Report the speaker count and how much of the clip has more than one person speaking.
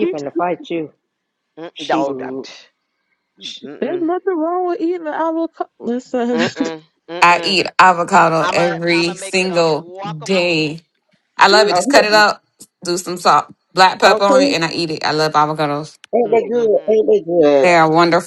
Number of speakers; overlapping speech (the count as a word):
five, about 30%